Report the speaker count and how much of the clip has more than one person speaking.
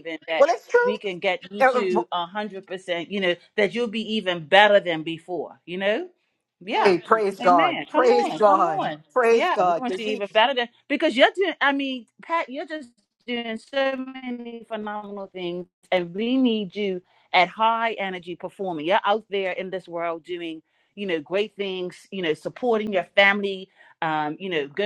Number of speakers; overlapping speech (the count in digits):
2, about 14%